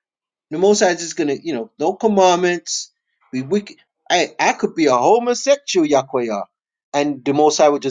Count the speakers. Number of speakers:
1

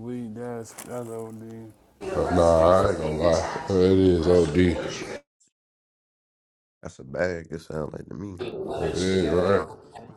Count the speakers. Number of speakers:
3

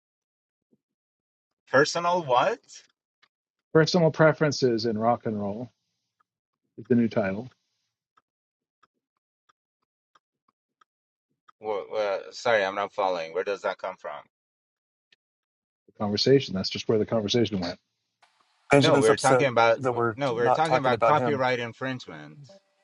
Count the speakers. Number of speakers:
3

